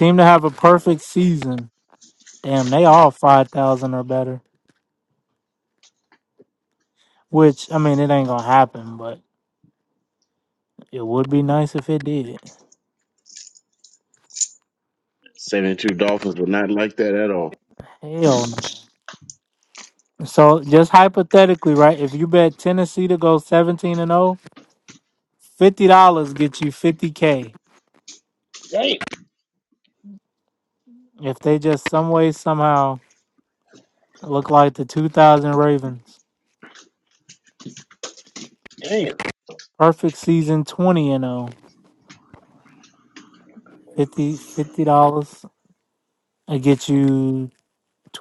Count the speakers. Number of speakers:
two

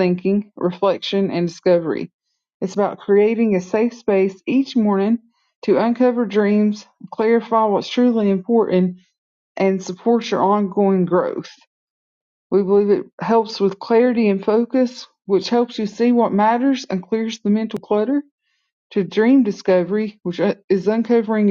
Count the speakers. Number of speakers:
one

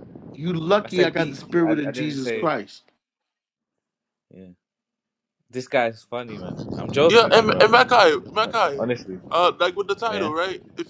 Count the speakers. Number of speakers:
three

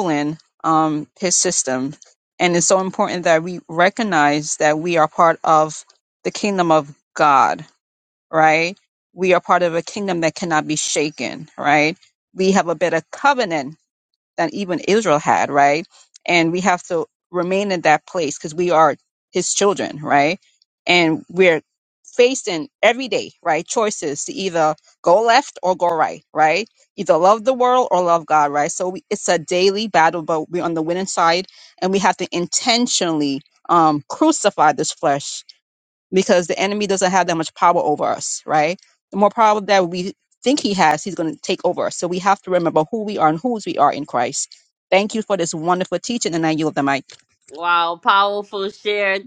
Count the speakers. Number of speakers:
two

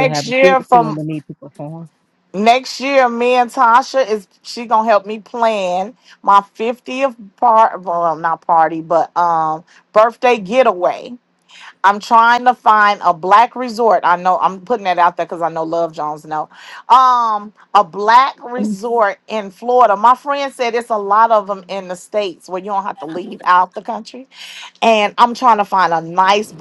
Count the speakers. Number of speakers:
two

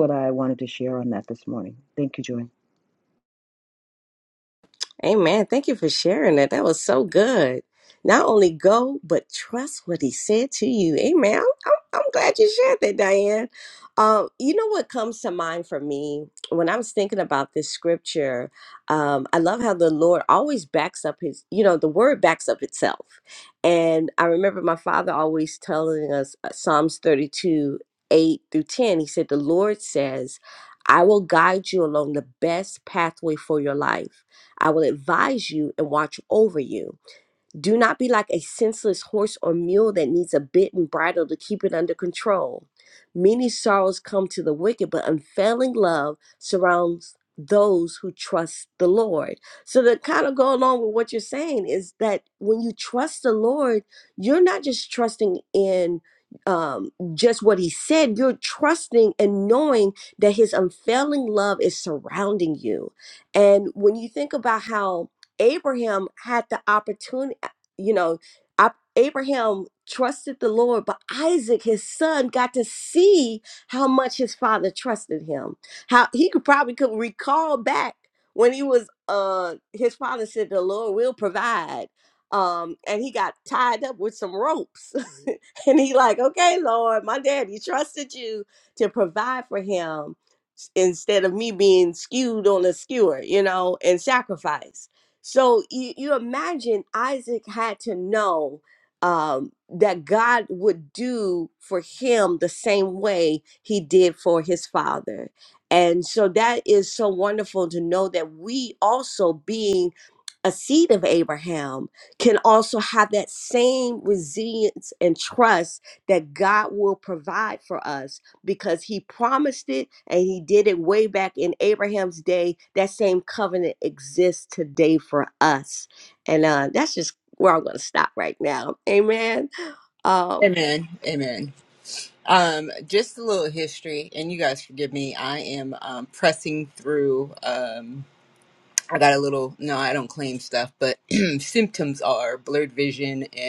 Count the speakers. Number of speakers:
three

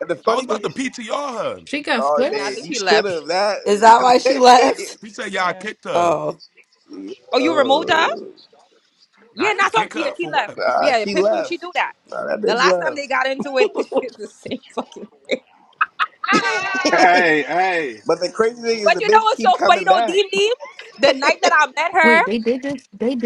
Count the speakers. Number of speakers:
six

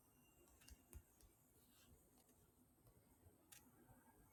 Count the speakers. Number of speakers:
zero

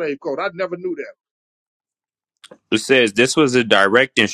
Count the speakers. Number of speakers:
two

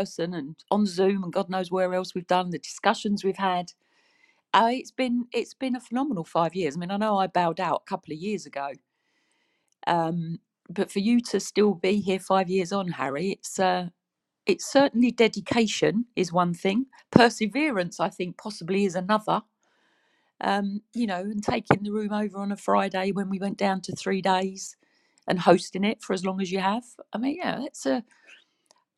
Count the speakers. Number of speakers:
one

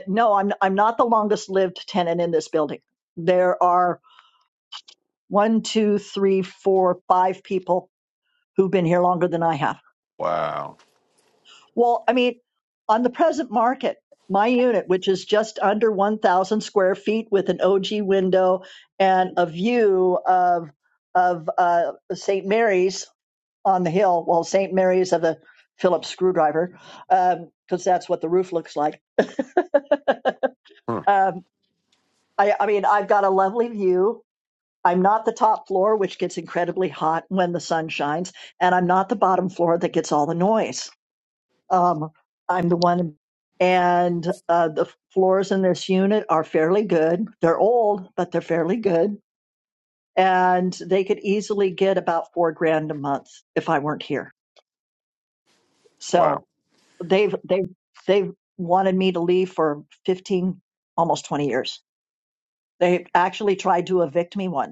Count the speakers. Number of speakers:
two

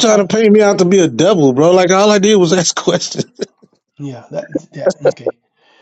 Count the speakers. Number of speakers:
two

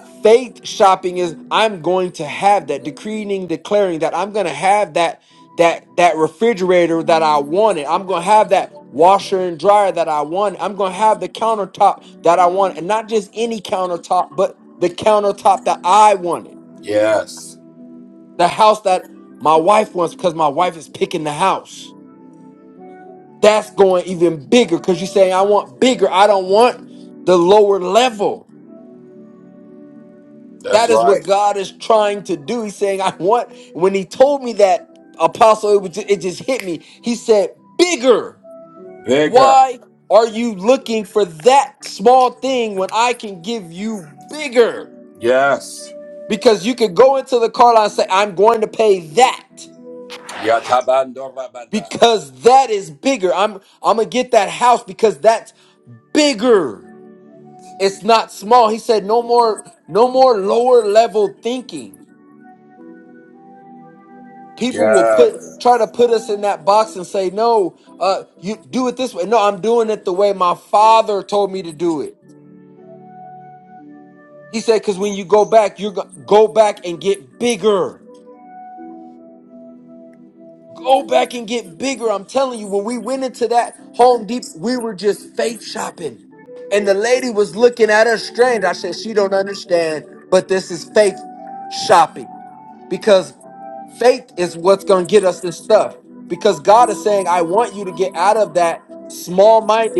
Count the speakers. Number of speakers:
two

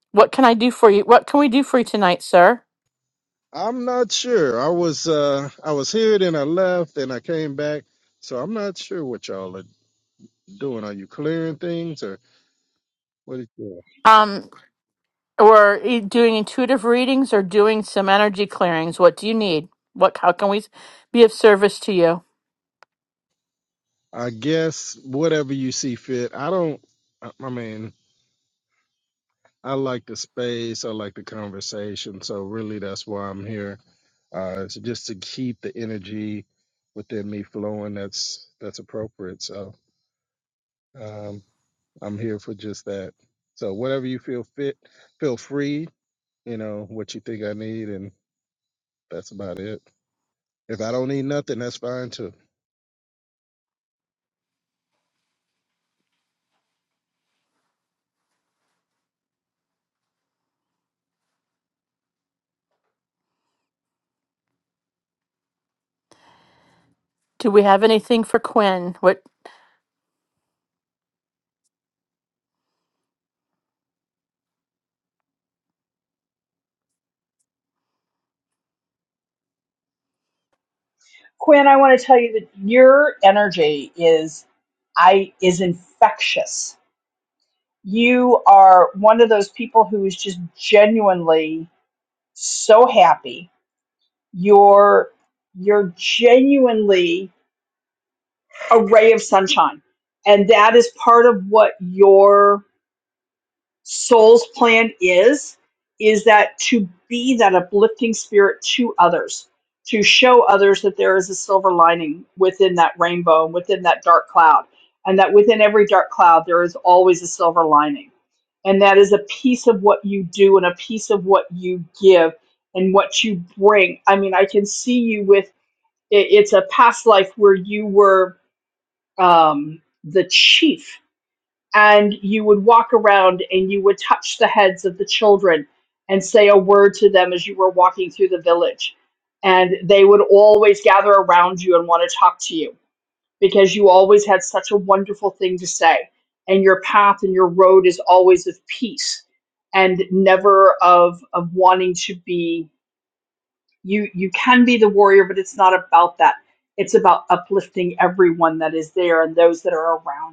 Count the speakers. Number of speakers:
three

